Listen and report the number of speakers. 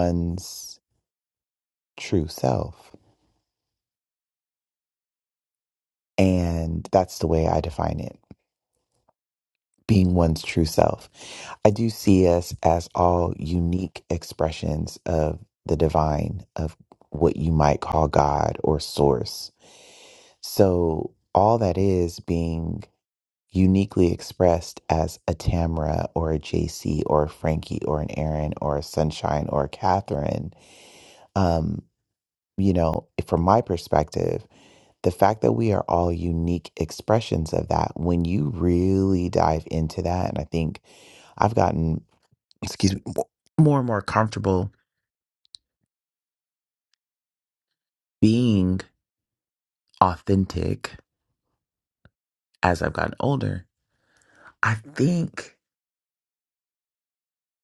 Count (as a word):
one